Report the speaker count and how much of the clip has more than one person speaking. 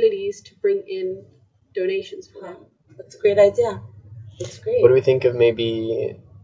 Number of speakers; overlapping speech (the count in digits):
3, about 5%